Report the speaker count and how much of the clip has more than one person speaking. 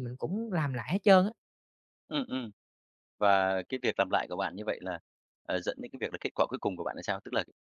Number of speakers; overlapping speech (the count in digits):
2, no overlap